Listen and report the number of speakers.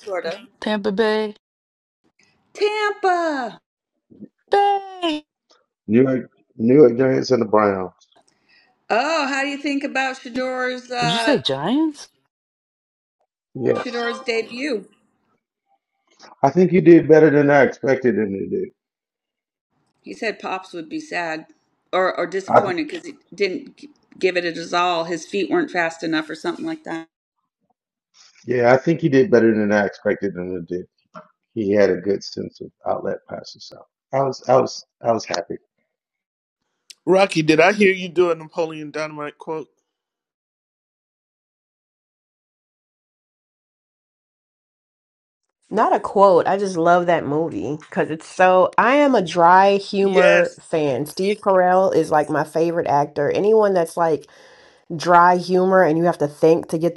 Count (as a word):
five